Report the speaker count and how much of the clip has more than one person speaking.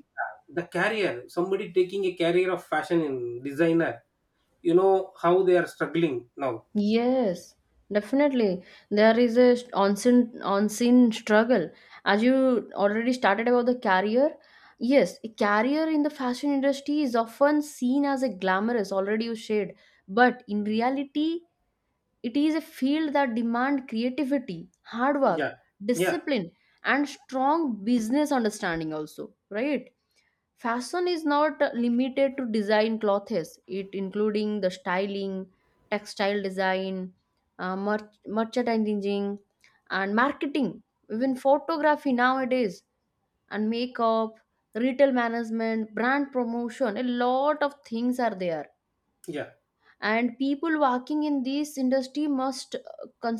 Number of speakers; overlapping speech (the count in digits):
2, about 1%